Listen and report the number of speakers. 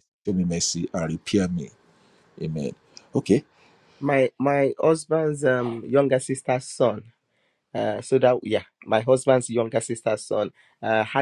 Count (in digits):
2